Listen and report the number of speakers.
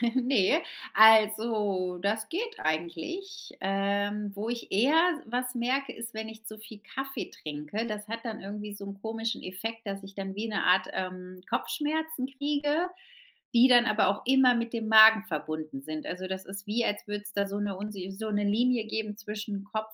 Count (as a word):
one